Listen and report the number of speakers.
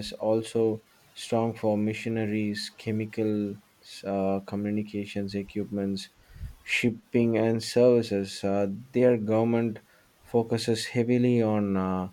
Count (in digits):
1